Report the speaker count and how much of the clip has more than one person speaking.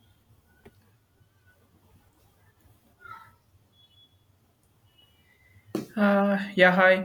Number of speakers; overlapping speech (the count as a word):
one, no overlap